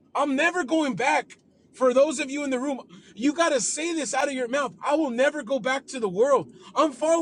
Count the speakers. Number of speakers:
1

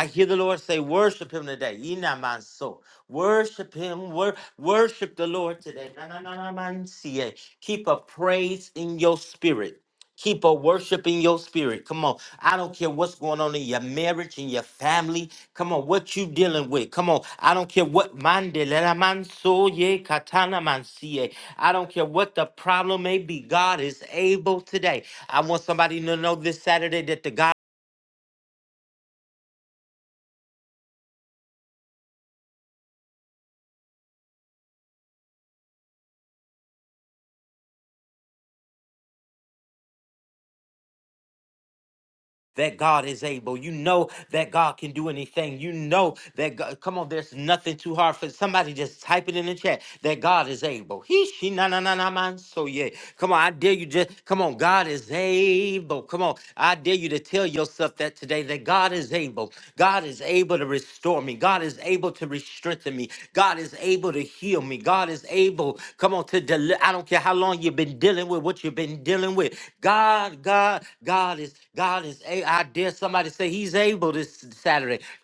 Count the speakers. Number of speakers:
1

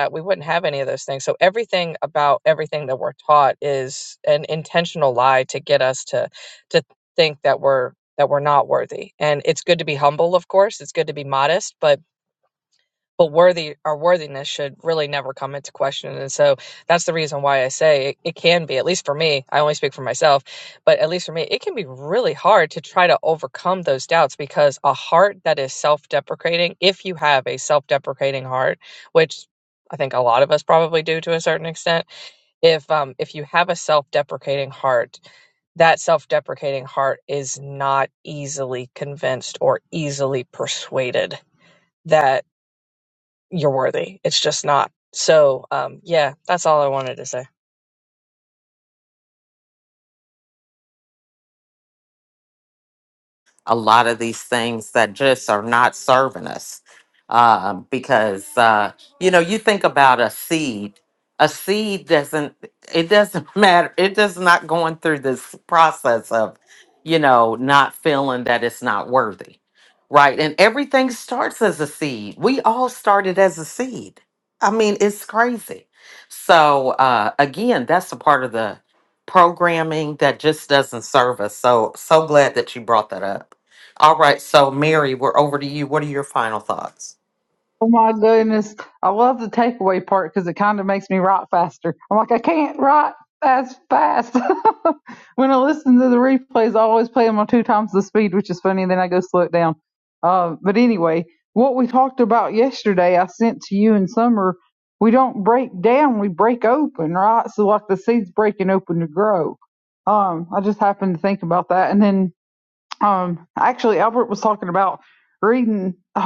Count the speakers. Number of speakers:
3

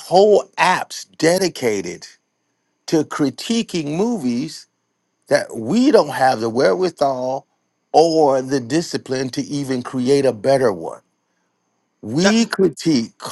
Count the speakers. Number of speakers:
1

